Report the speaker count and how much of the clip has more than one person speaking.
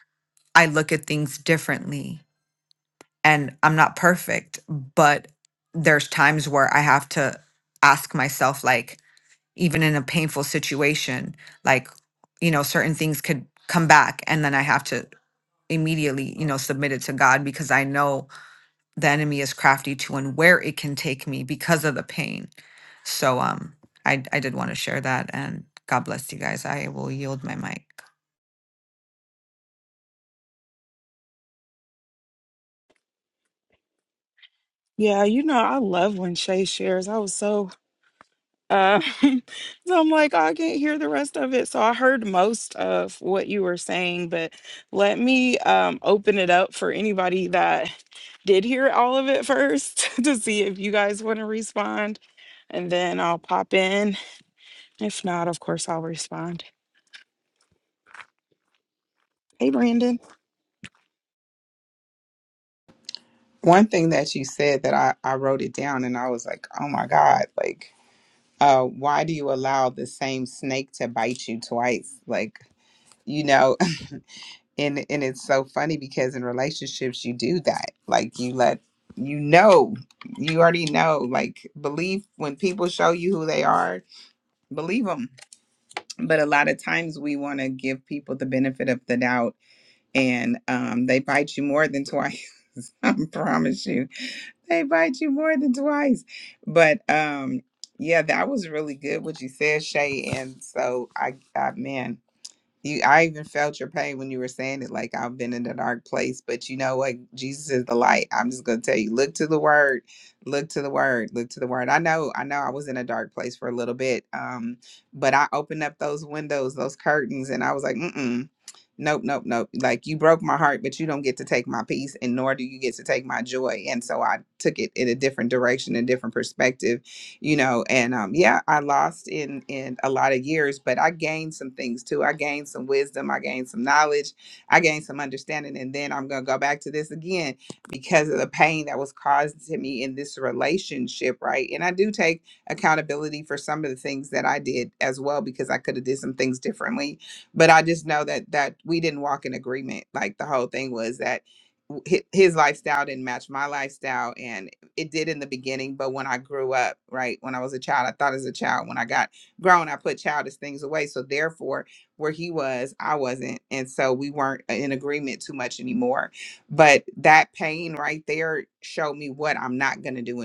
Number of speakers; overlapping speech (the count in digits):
3, no overlap